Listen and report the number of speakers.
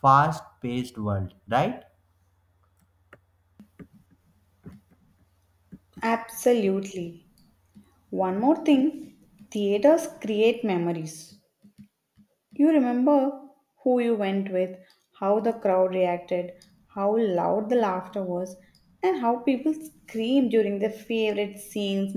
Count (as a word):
two